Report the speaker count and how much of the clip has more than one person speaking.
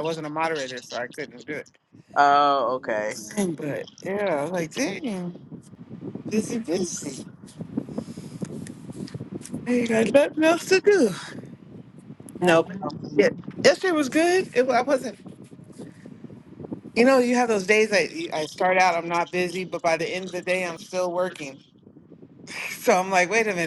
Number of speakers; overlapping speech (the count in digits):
2, about 1%